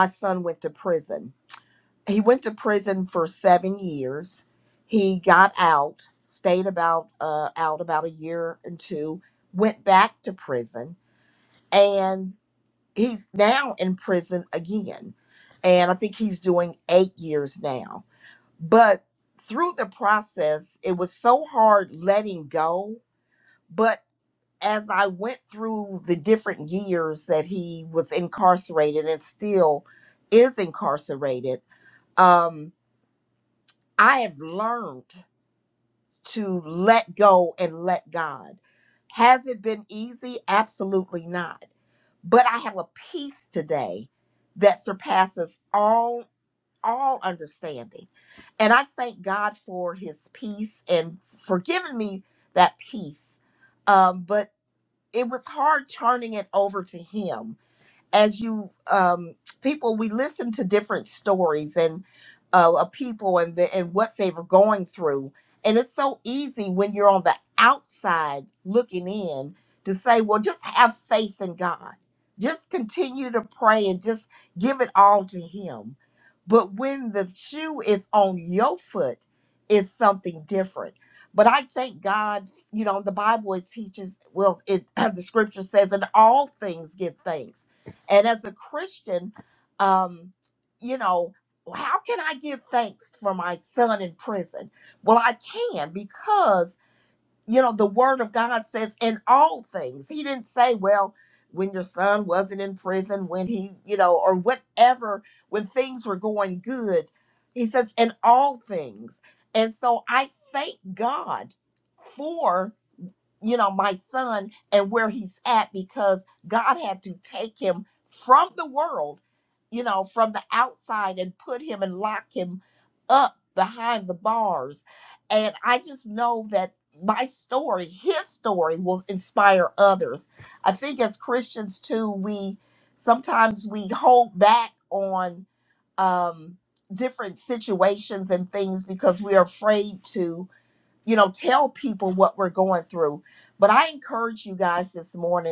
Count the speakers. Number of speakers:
1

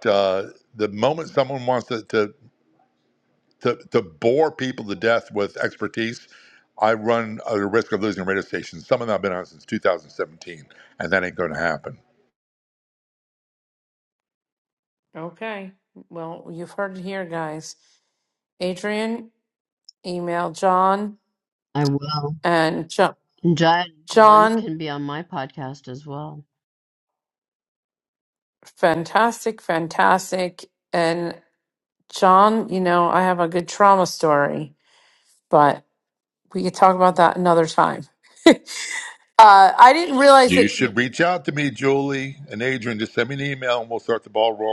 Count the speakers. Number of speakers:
3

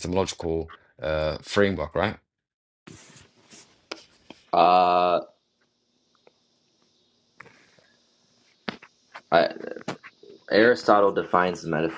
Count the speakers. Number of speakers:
2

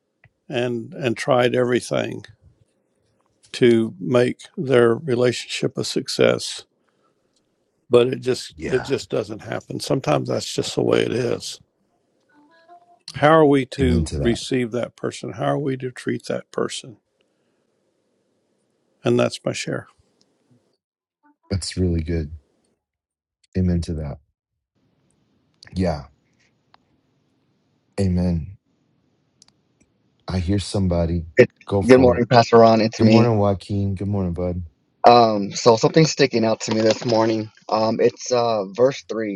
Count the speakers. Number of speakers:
3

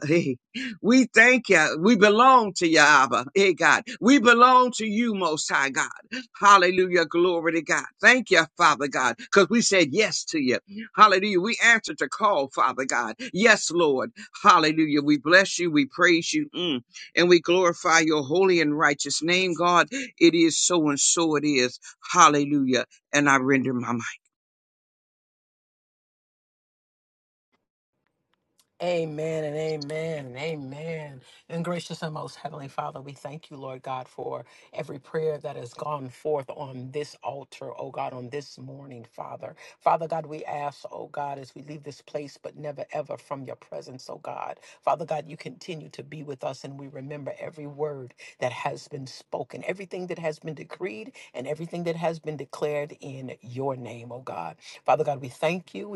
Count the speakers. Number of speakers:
2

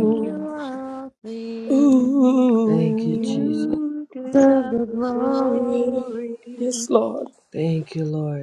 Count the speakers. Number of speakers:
4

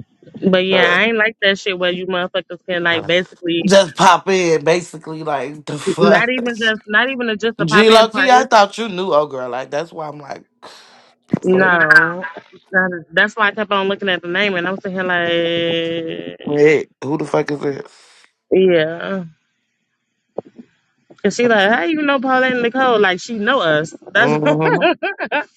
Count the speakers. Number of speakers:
2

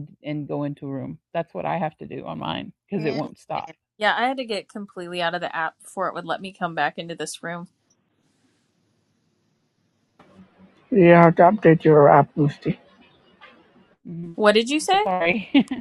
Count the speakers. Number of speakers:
3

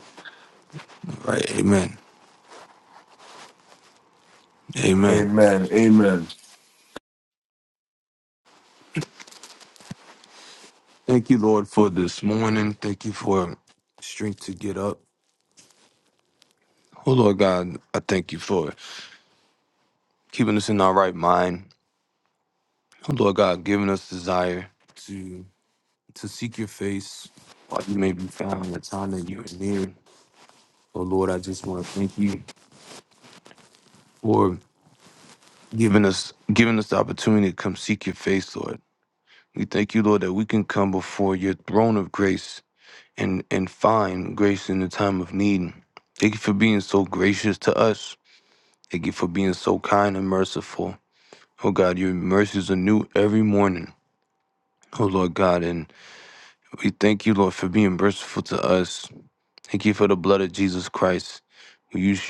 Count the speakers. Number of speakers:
2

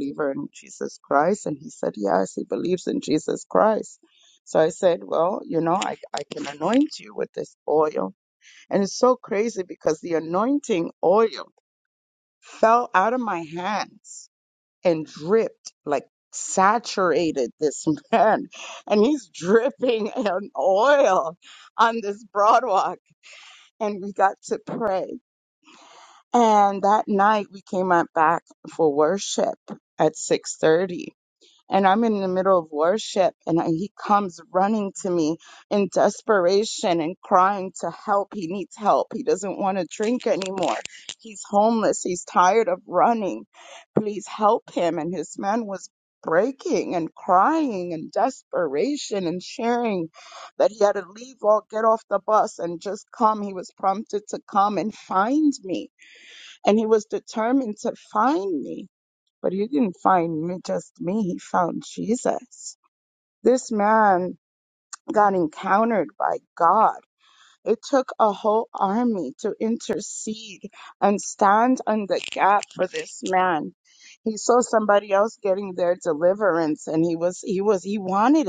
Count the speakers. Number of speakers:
1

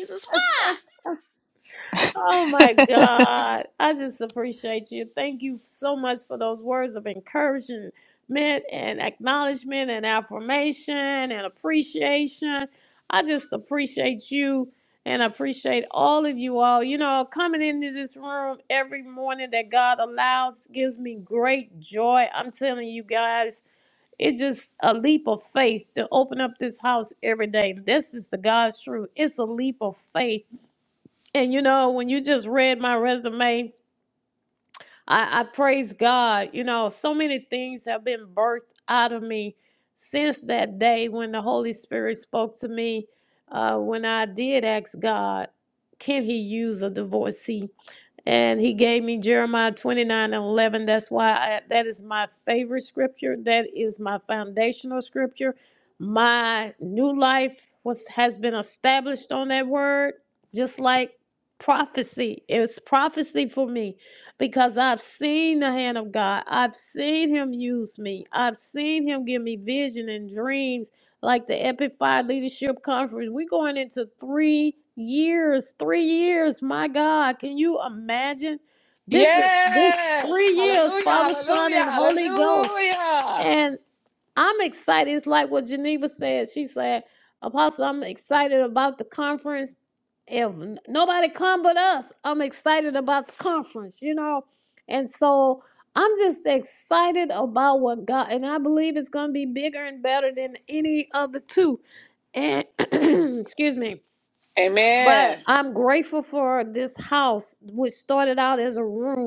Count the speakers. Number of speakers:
2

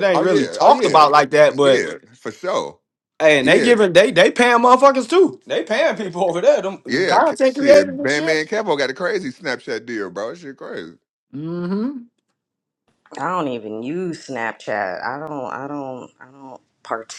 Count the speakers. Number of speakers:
3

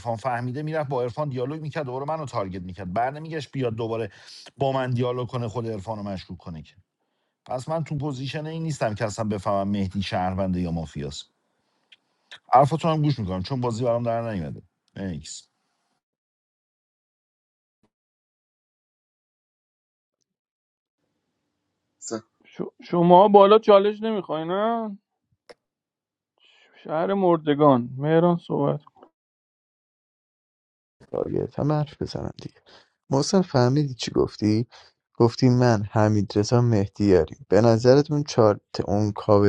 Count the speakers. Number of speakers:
3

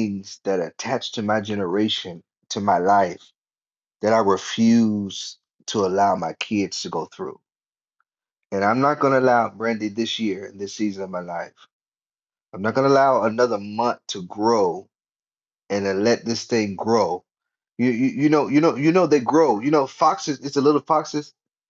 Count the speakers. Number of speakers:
1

